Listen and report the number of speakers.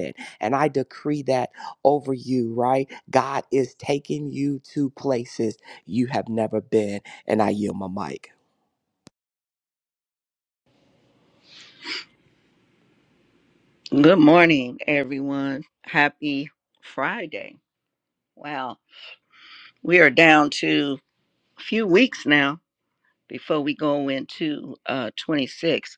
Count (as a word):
two